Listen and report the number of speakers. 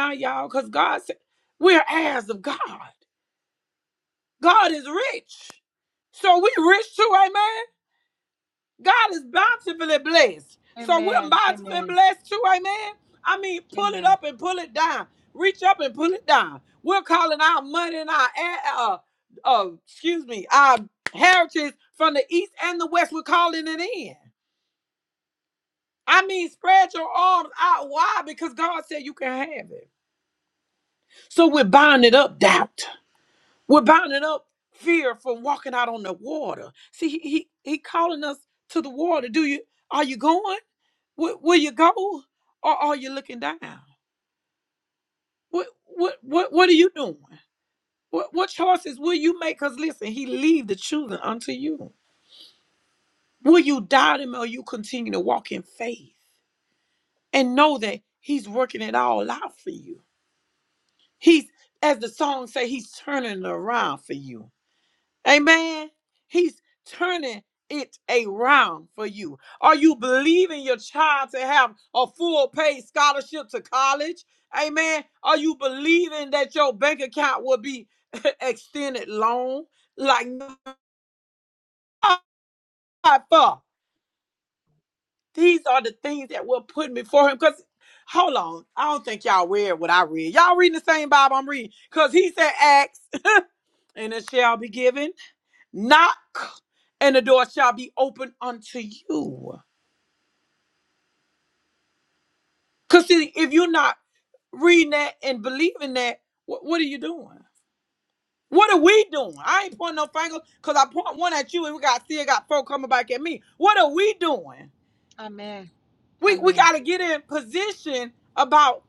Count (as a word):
two